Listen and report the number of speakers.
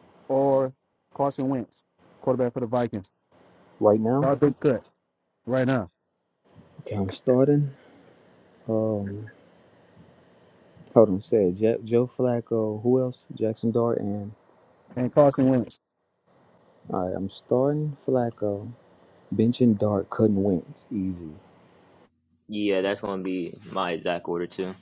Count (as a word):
three